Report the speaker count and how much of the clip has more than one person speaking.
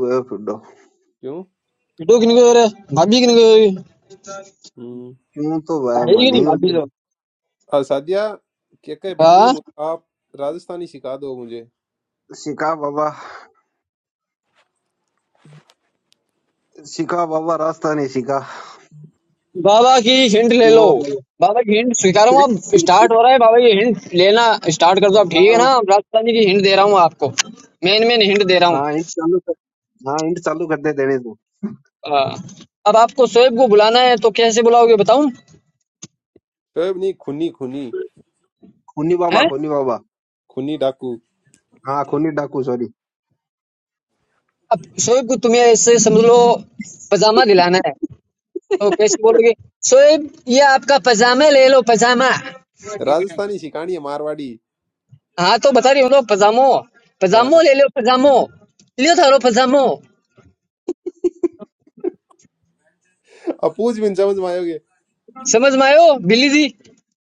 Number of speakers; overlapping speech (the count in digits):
3, about 3%